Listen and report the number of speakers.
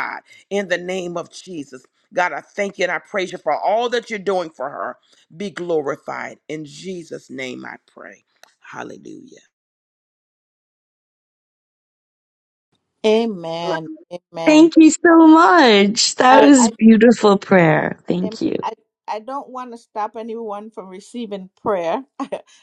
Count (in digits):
3